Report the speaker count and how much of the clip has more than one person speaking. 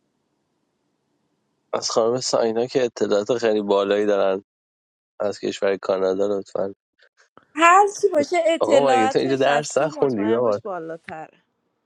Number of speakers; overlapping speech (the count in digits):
2, about 17%